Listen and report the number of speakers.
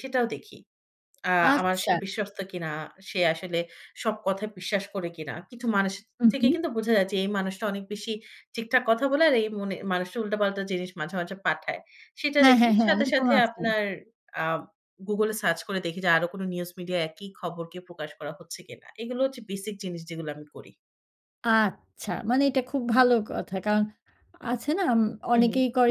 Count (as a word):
two